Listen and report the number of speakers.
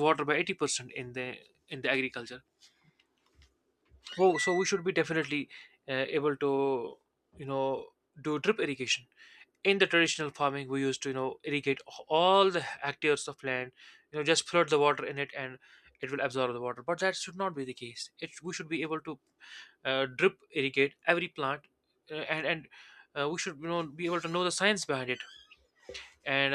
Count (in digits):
1